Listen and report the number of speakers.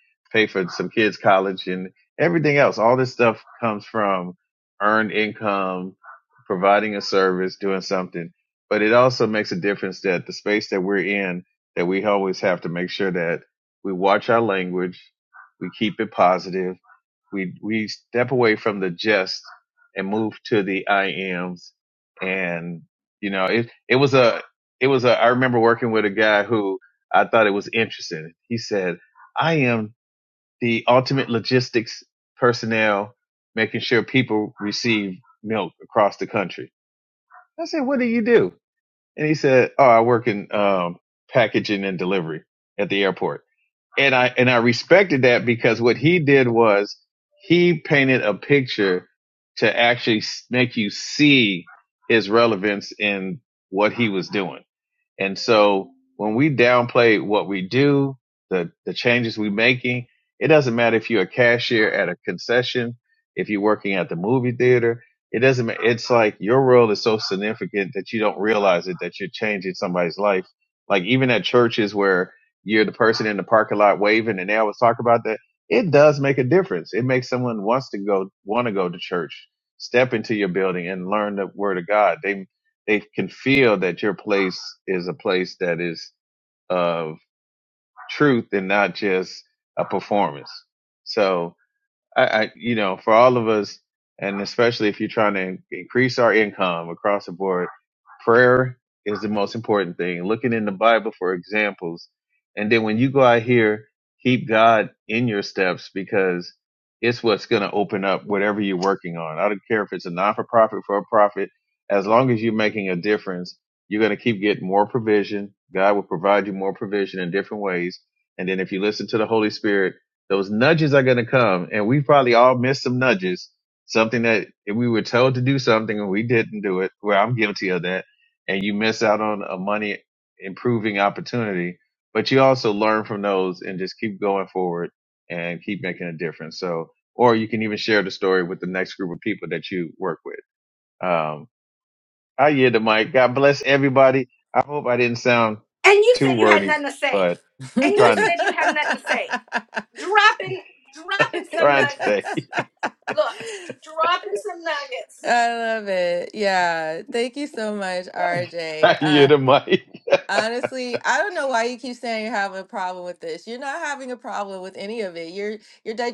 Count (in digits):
3